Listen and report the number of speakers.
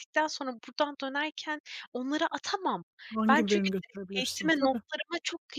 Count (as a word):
two